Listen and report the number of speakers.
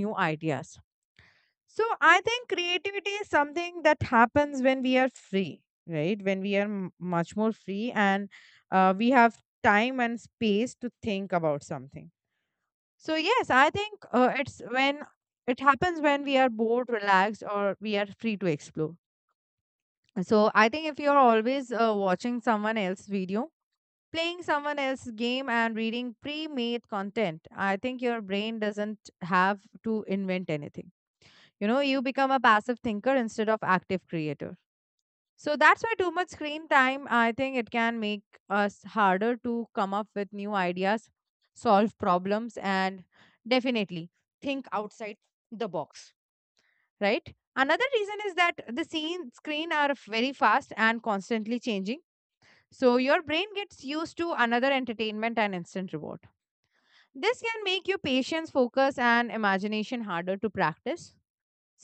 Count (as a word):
one